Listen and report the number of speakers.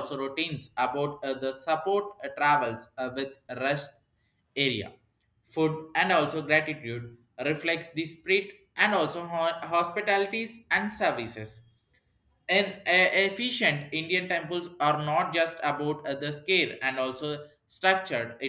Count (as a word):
one